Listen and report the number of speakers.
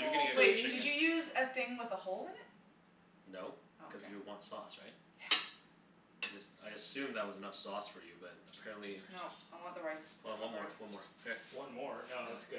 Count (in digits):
3